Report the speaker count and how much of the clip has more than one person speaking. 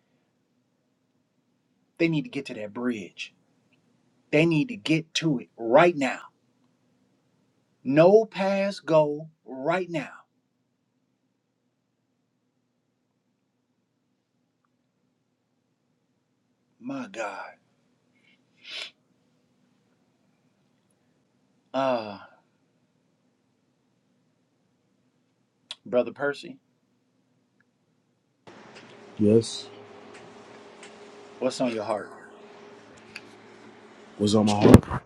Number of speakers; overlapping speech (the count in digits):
2, no overlap